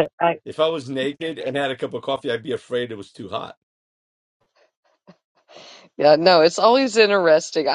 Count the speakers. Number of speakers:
2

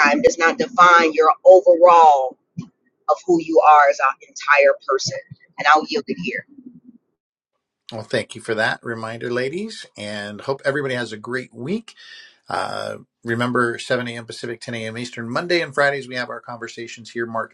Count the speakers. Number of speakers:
2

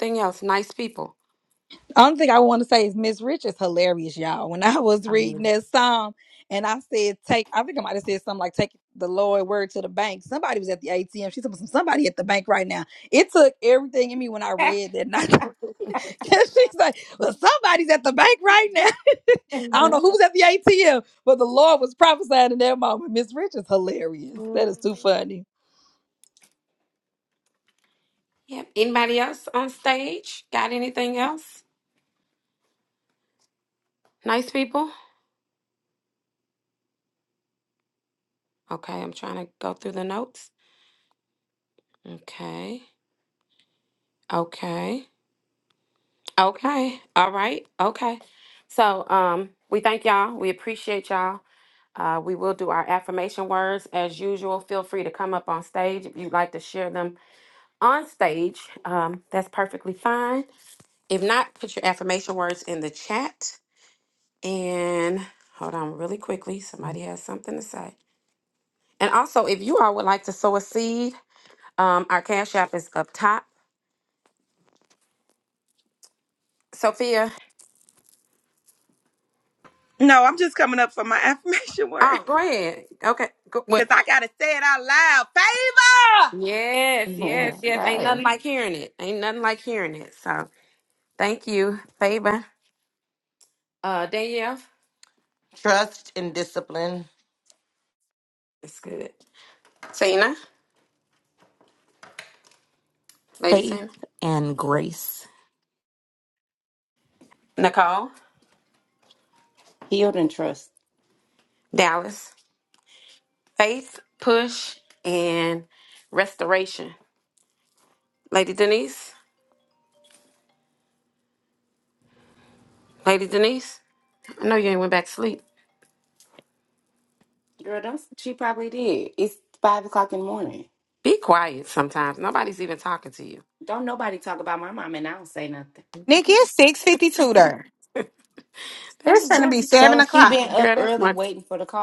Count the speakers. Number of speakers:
7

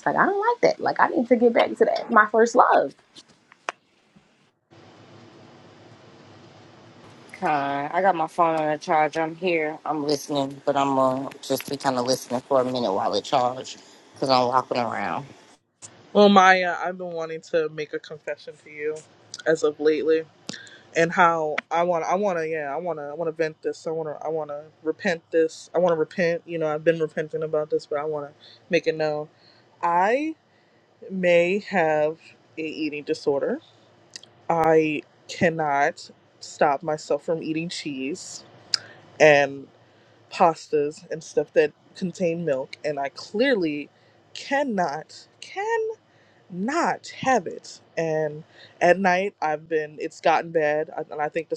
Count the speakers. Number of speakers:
3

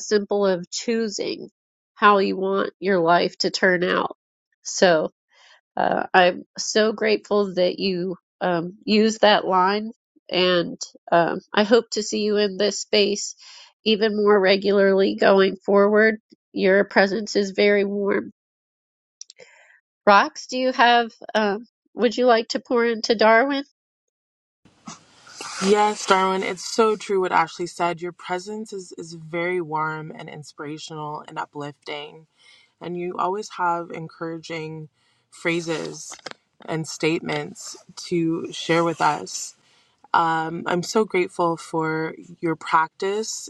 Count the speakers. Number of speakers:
2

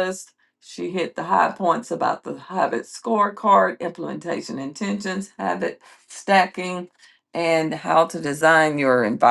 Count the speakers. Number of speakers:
1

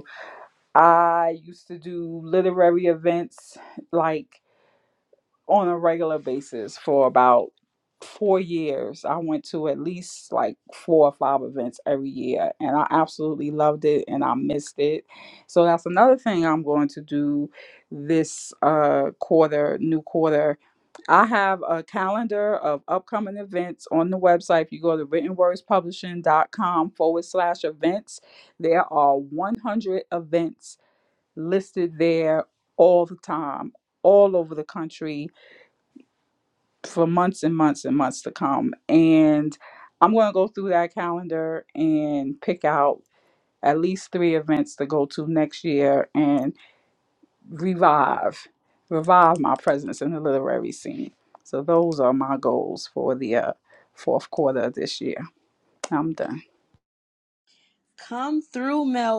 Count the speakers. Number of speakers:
2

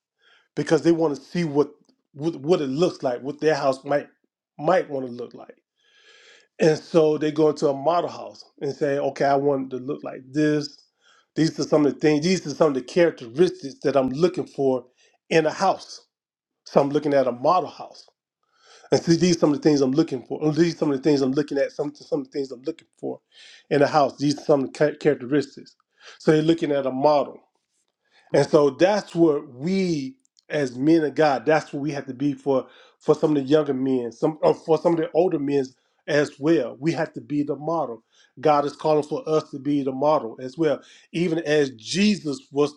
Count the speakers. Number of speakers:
1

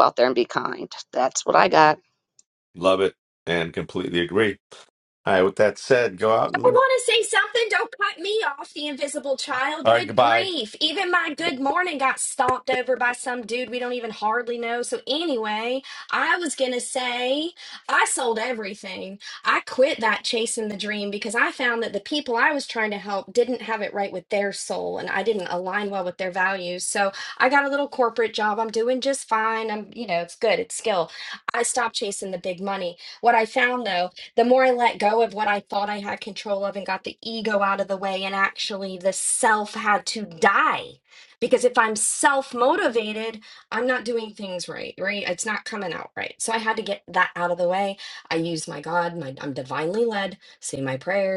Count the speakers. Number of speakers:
3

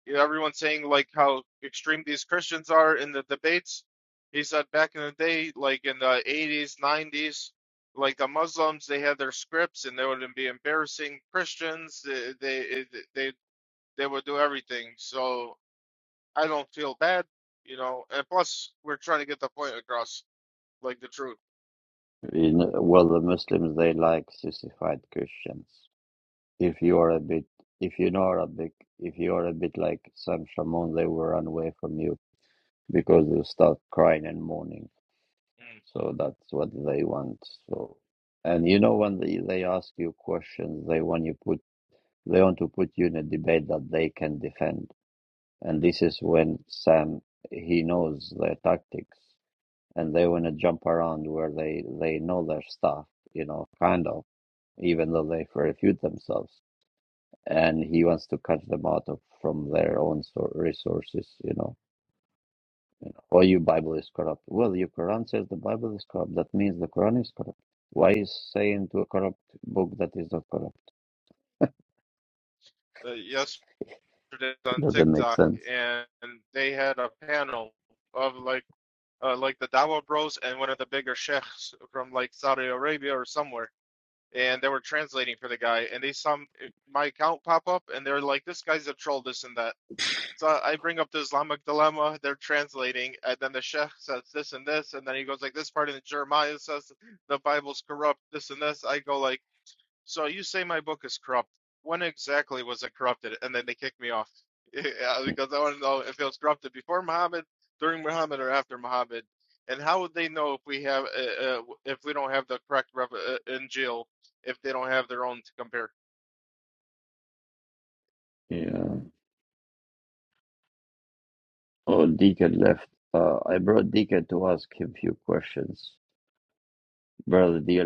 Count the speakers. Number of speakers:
2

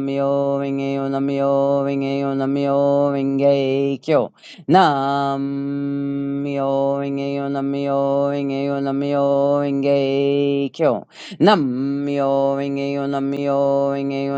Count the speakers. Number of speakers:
1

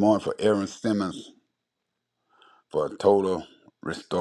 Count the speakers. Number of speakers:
1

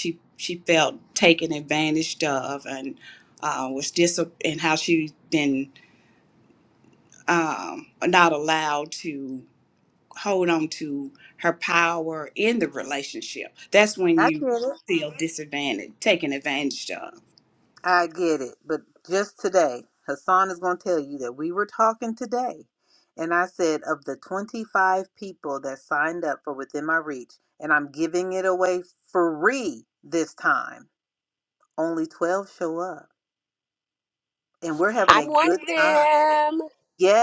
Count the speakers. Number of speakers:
3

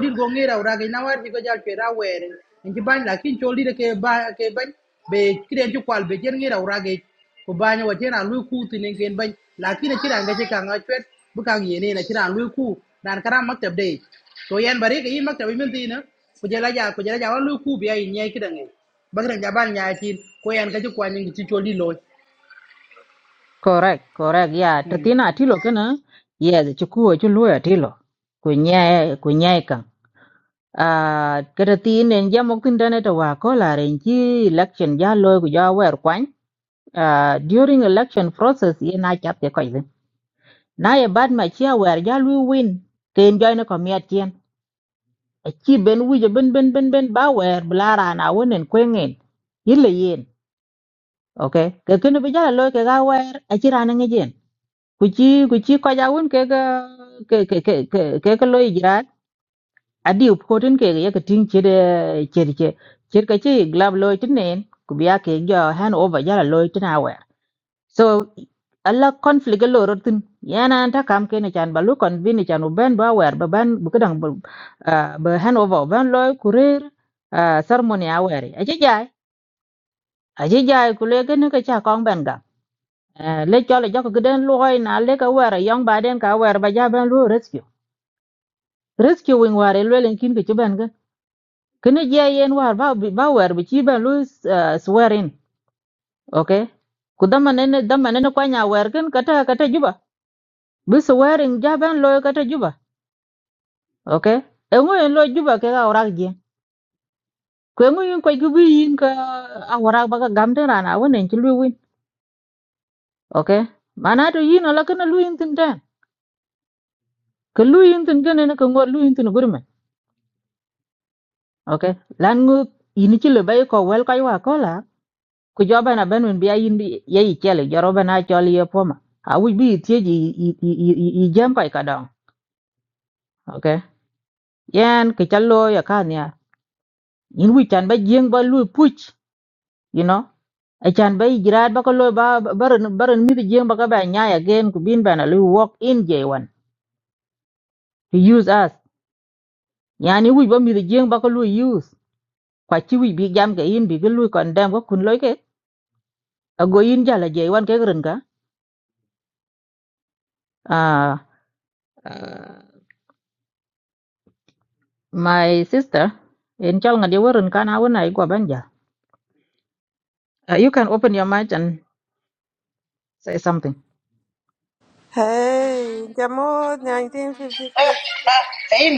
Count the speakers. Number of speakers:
3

